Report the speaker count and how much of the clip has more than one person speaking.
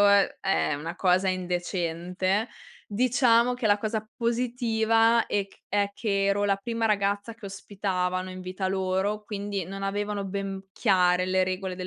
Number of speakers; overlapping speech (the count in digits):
1, no overlap